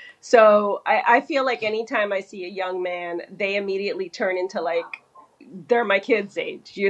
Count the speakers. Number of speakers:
1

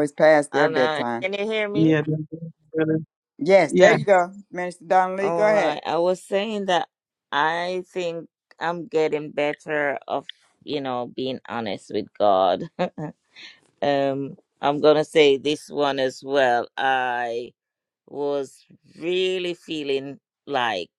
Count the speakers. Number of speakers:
3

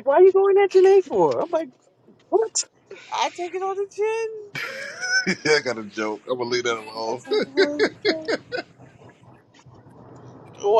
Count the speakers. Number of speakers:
3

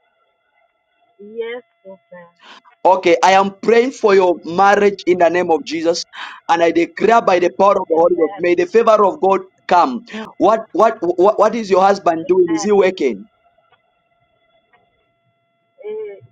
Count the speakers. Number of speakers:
2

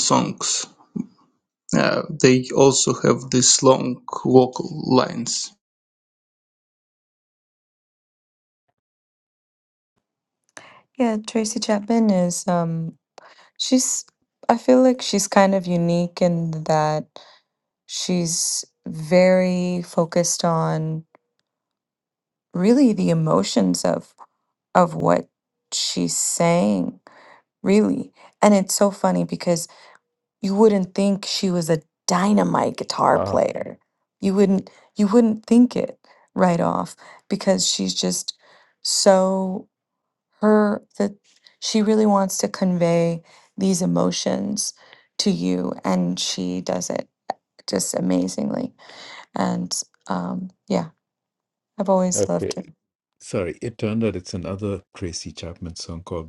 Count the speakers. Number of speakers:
3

